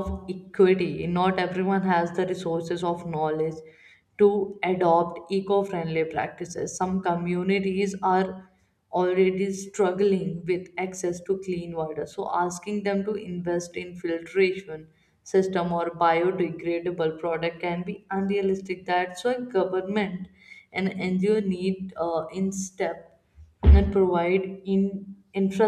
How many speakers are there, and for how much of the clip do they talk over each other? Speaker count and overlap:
one, no overlap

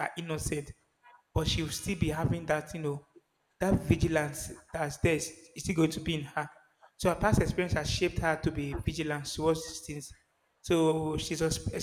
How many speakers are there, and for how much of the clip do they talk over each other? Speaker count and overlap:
one, no overlap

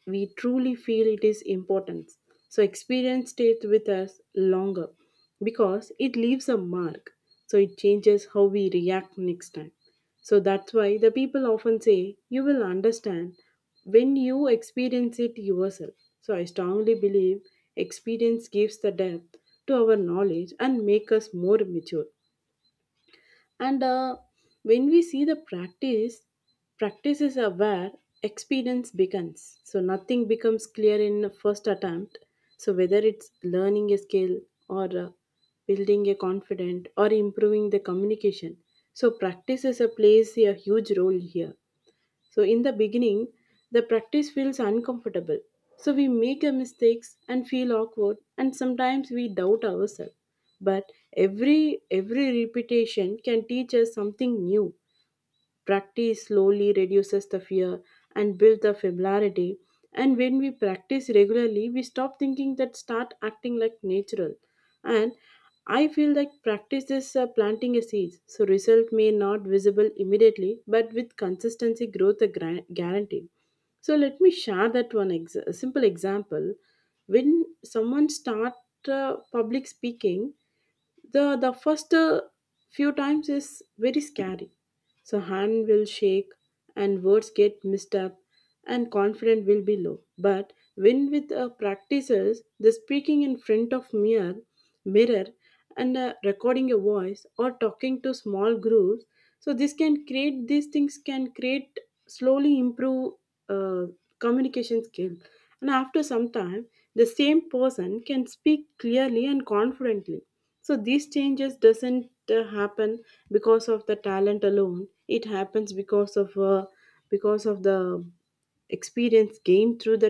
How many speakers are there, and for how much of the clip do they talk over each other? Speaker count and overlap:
one, no overlap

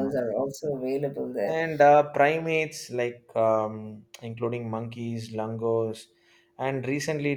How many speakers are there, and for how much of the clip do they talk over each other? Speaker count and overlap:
two, about 4%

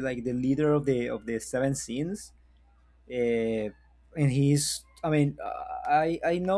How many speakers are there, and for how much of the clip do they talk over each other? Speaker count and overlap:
one, no overlap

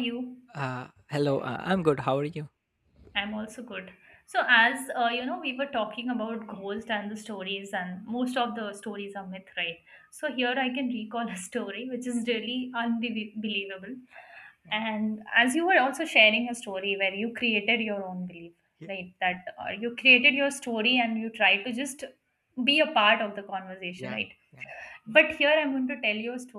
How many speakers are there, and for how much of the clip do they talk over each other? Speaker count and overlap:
two, about 1%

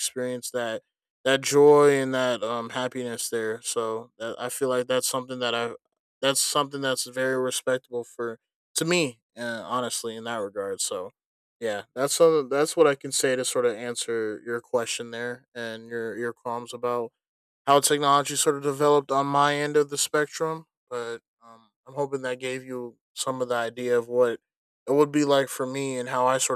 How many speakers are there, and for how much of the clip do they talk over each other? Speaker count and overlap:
one, no overlap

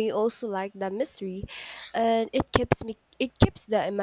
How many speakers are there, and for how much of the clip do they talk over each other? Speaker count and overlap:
one, no overlap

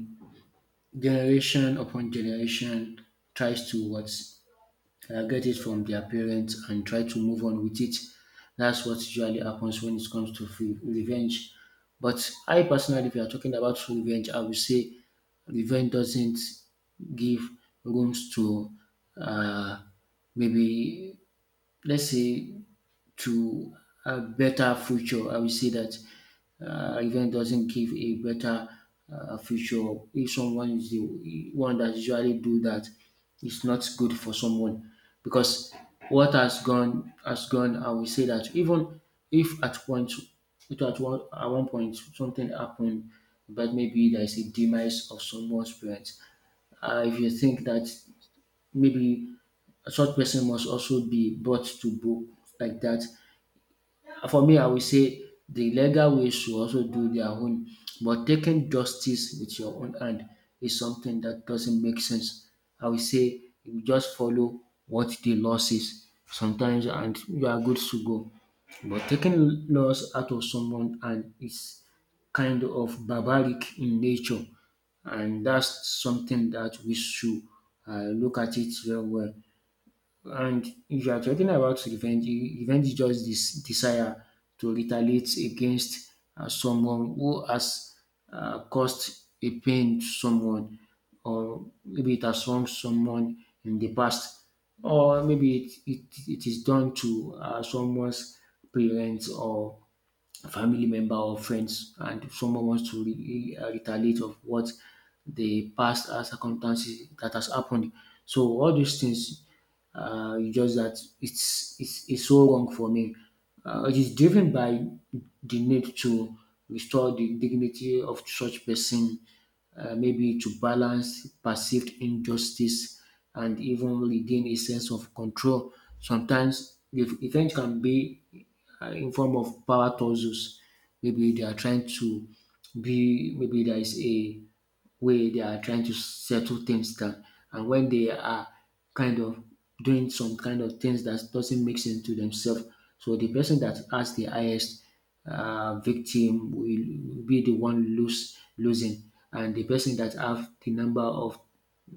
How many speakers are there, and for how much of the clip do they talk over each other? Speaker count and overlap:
one, no overlap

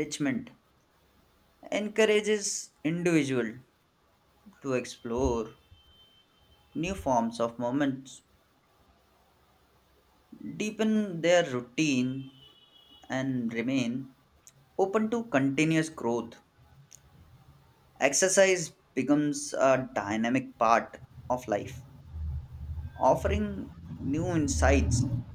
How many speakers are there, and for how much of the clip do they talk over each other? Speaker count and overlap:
one, no overlap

